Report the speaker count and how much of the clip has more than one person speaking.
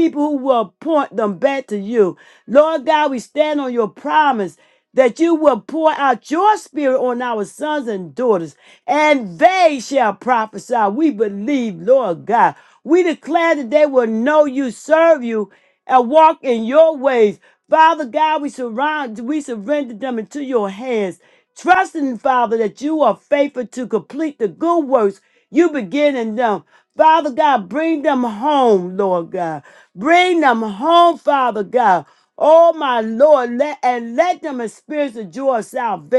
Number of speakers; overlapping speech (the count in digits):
1, no overlap